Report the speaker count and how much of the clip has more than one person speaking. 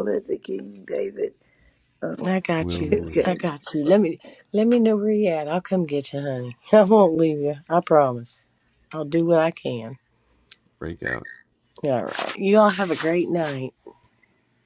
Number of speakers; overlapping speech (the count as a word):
three, about 5%